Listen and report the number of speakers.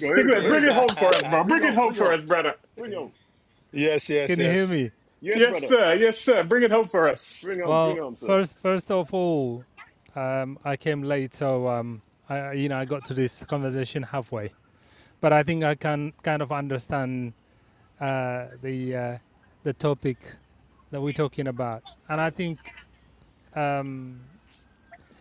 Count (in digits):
4